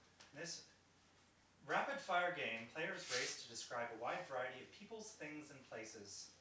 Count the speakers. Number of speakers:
1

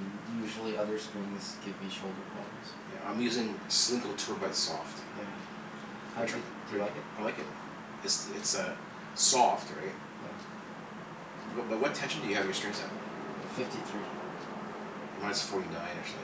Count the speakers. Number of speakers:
2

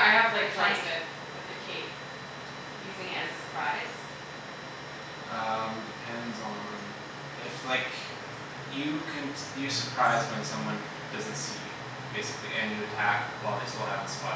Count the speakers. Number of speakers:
3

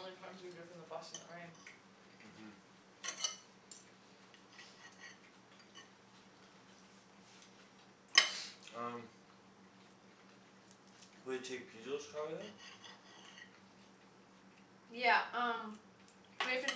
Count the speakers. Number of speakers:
3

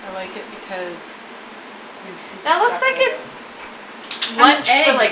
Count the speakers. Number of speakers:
2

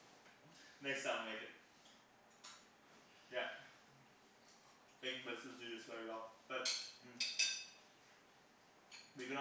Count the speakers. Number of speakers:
1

